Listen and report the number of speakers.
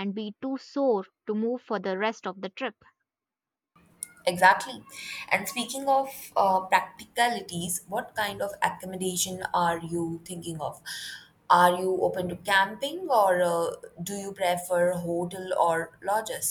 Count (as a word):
two